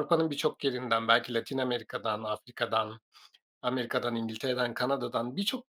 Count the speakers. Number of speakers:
1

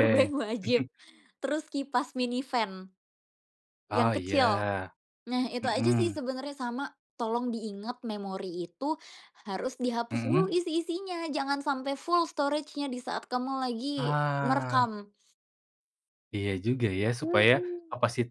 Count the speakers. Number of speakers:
2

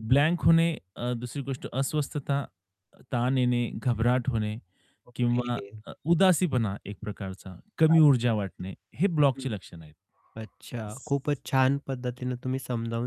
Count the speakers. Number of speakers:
2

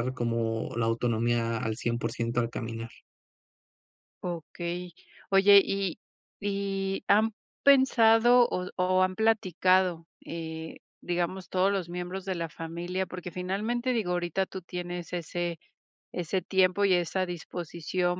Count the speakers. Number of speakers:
2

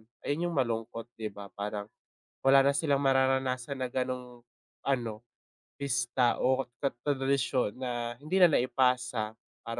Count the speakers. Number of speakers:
1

